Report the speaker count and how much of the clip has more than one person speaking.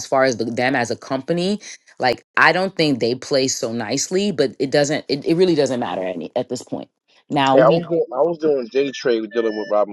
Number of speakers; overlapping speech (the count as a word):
two, about 3%